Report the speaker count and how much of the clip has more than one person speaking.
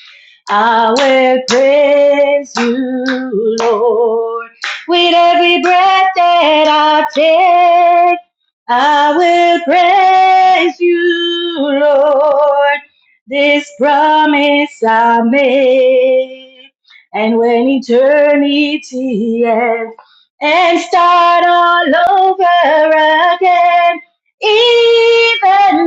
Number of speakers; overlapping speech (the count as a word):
one, no overlap